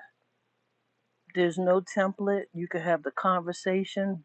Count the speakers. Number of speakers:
1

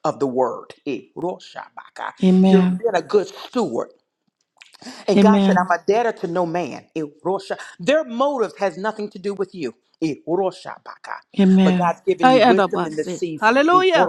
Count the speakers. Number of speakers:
2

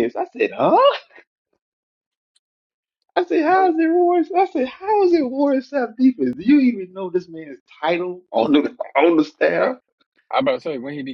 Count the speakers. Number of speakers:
2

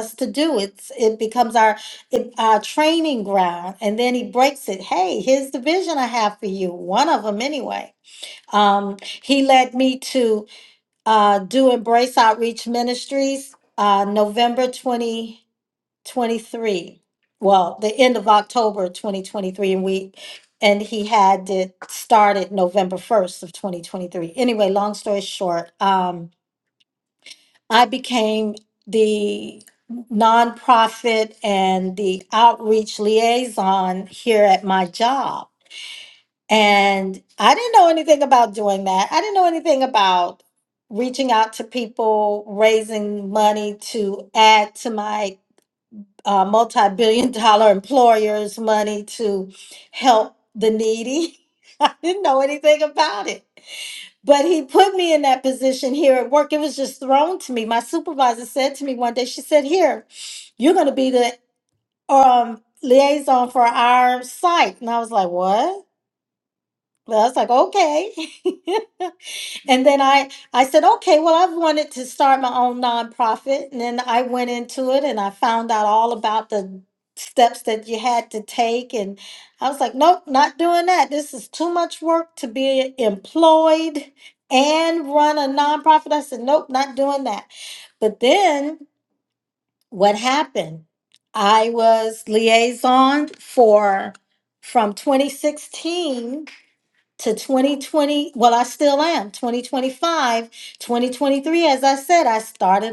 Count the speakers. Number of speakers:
1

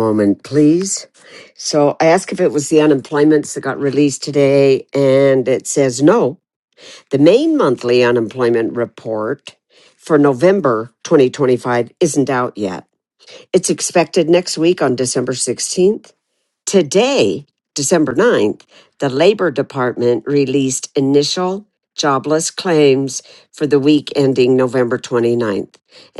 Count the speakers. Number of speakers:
1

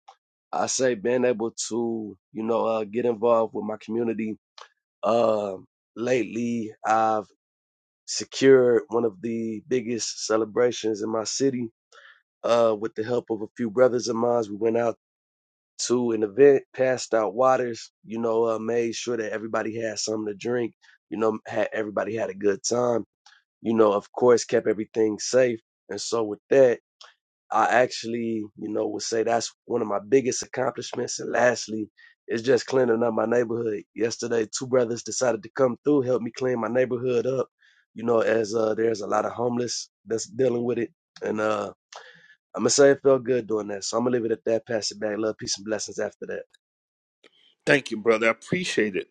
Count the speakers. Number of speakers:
2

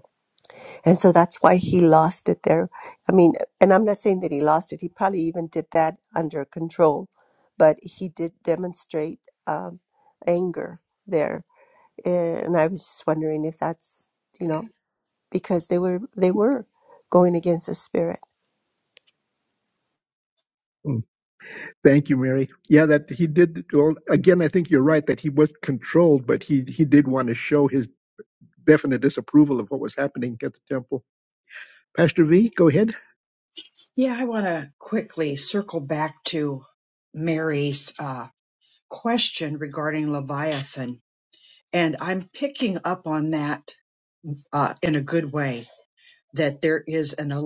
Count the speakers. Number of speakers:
3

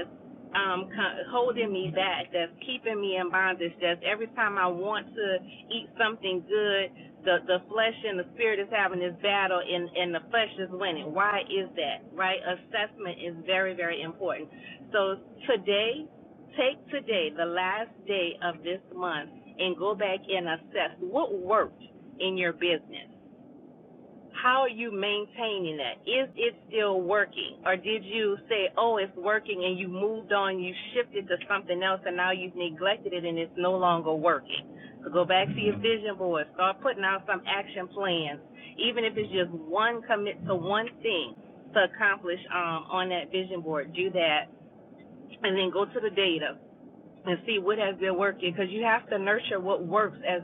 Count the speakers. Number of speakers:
1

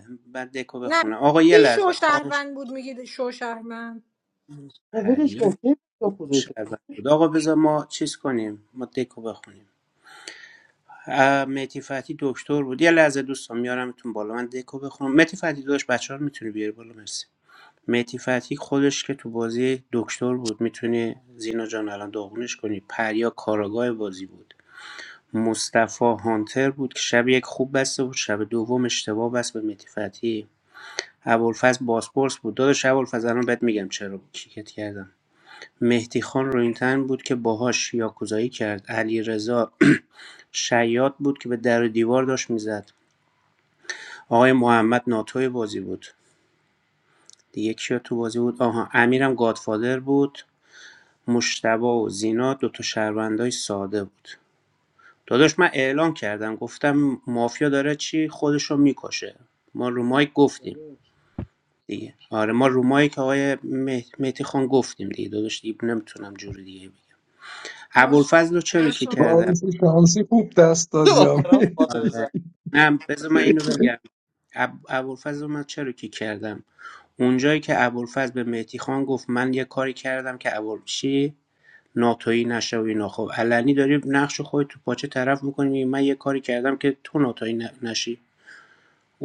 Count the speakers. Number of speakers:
4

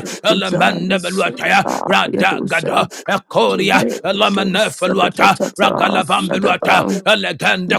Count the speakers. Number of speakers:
2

